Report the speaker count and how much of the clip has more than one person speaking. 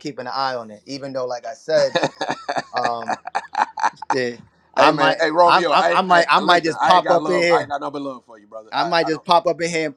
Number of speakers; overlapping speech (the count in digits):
2, about 34%